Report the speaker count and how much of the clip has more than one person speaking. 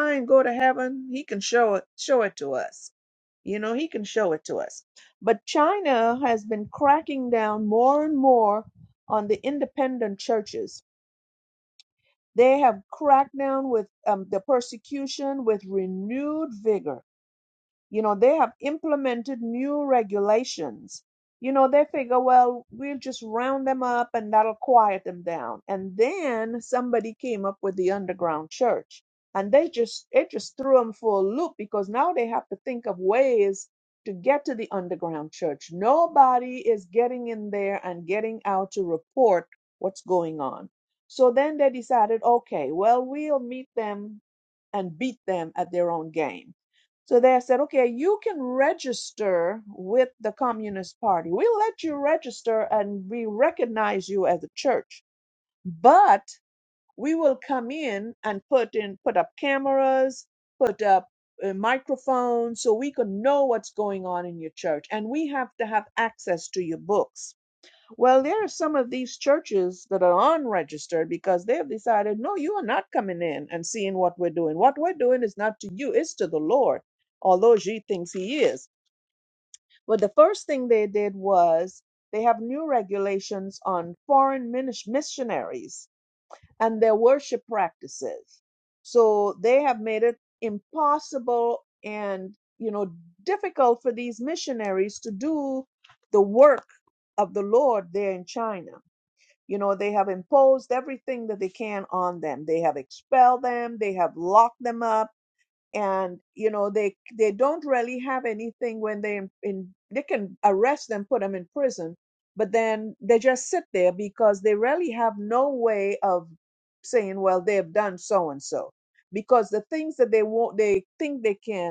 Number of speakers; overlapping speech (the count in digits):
1, no overlap